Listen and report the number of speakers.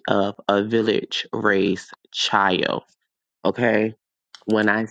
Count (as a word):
one